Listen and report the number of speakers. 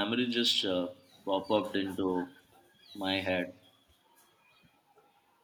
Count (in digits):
1